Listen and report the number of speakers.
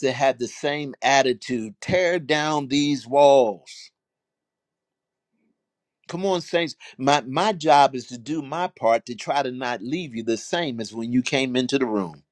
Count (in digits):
1